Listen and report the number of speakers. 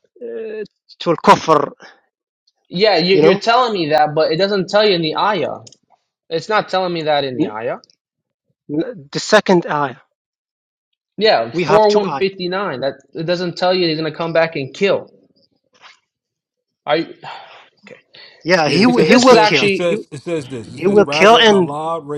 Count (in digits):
3